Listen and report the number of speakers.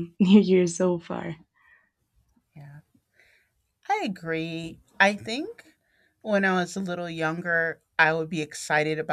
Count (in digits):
2